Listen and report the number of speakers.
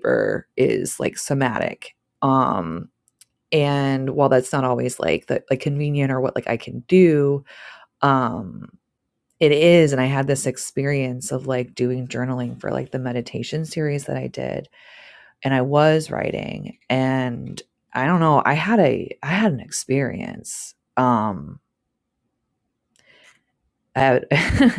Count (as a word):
one